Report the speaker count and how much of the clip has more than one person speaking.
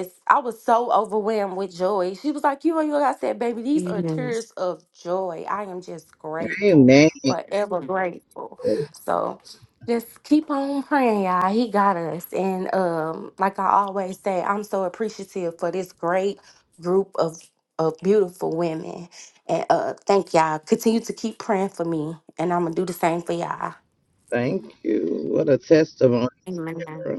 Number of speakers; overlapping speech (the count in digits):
3, about 3%